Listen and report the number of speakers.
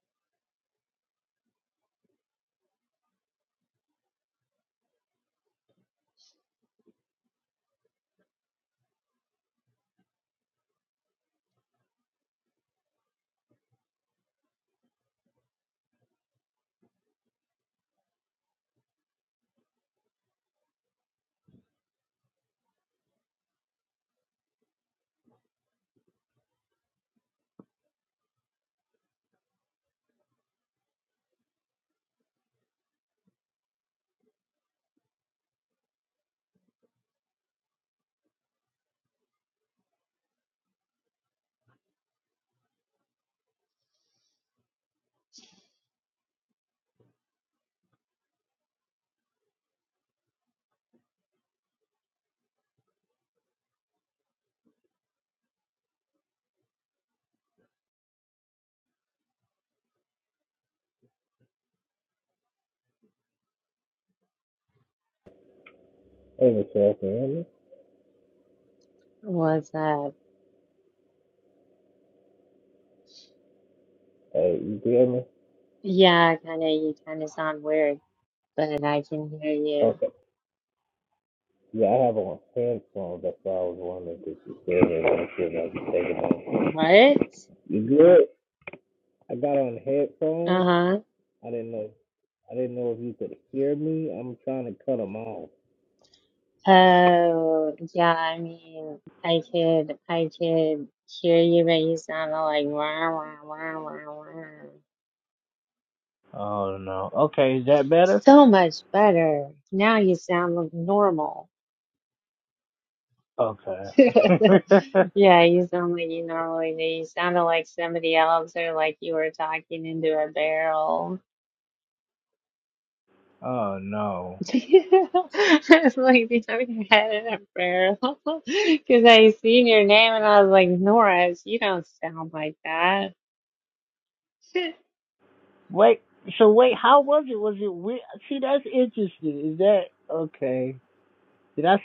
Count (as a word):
two